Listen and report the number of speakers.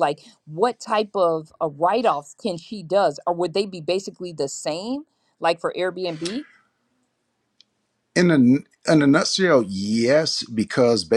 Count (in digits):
2